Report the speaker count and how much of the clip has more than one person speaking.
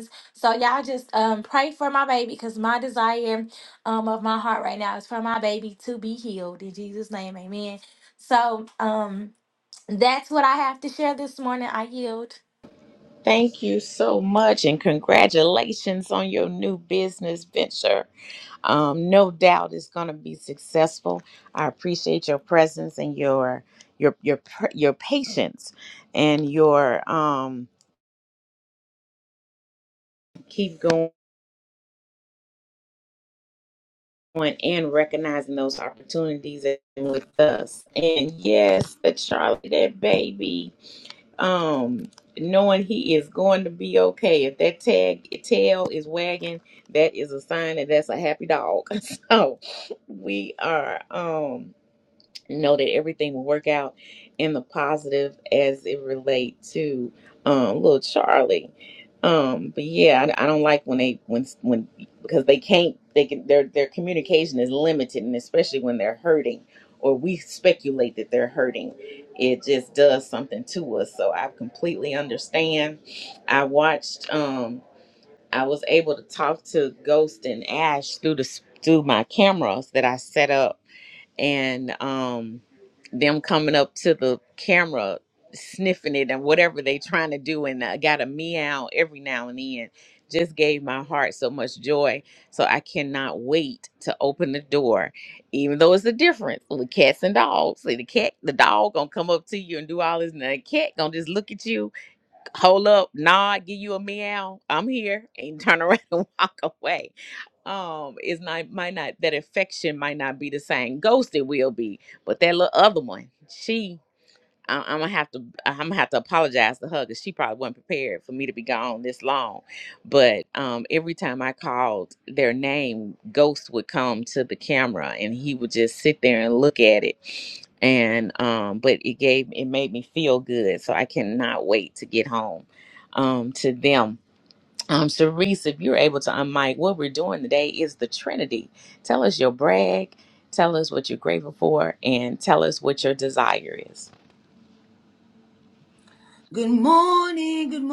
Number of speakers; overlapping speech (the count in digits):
3, no overlap